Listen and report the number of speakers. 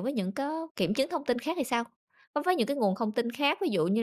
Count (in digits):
1